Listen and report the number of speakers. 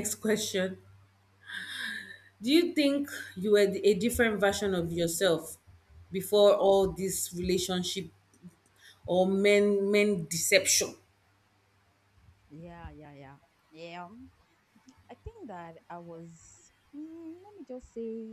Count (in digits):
2